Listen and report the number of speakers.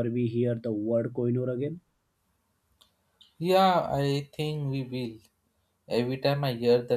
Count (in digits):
2